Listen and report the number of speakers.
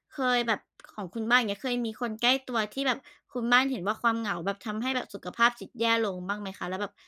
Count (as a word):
one